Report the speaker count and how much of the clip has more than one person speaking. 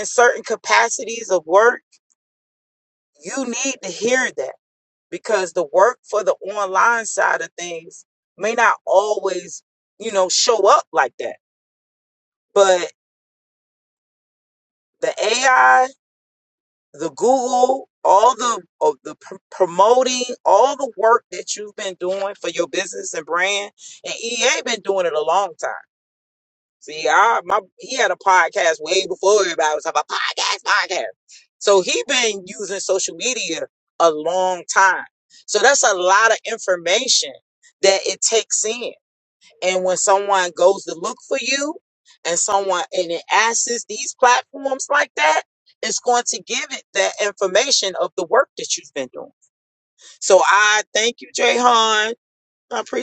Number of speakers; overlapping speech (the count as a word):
one, no overlap